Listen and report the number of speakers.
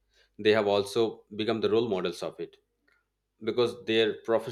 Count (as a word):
one